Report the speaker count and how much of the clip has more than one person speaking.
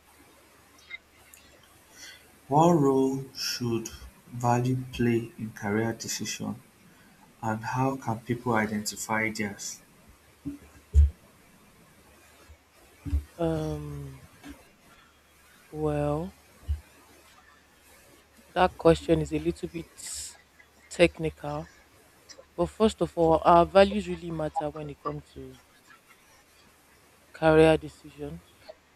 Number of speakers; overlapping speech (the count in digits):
2, no overlap